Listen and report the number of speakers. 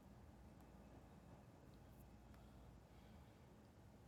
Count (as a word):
zero